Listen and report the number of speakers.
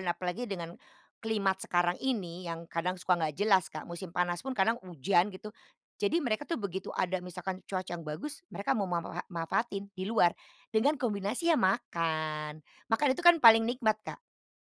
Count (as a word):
one